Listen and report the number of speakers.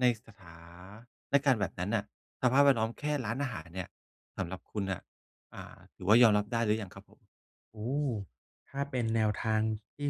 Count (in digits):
2